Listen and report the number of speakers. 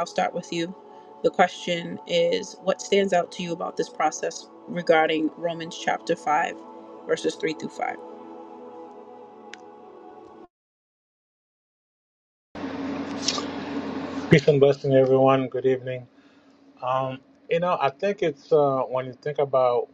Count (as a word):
two